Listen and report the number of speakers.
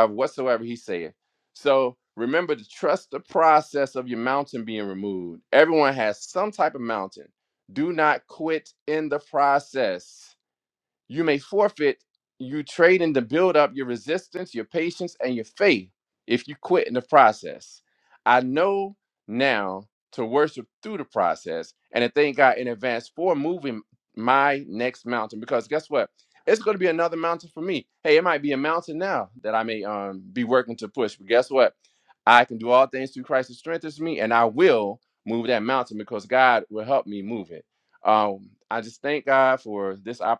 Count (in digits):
1